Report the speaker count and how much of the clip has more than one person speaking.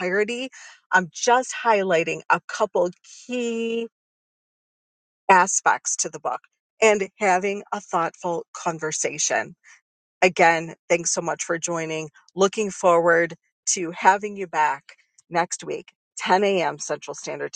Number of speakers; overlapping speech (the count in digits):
1, no overlap